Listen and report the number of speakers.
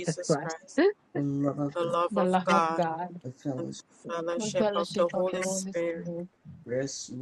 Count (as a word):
three